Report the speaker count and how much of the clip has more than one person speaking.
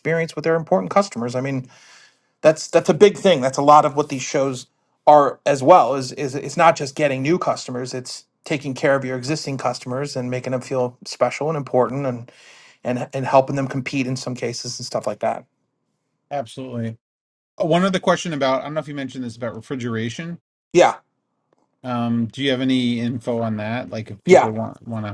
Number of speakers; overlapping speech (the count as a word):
two, about 1%